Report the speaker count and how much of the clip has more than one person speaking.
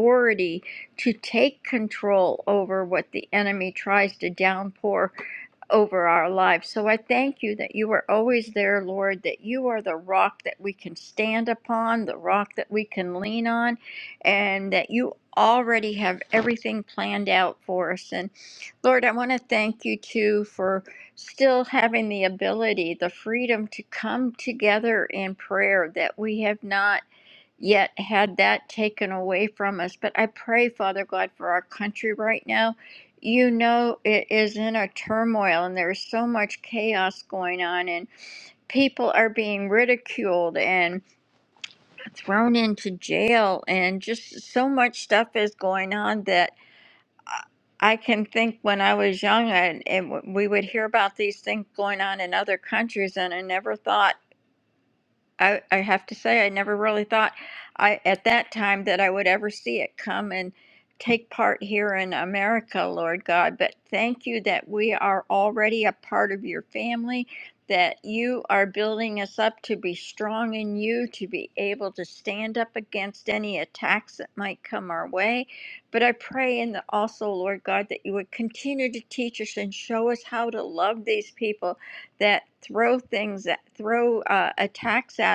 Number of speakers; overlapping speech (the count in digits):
1, no overlap